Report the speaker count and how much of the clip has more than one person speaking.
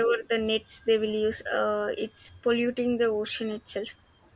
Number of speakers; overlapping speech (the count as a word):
one, no overlap